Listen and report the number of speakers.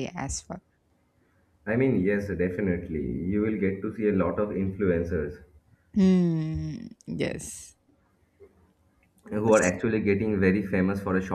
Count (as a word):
two